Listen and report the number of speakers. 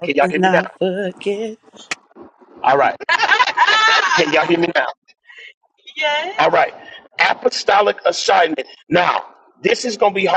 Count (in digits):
2